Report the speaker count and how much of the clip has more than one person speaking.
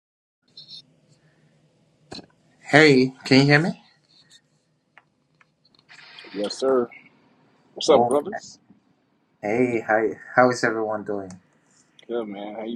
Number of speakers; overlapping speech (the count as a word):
two, about 3%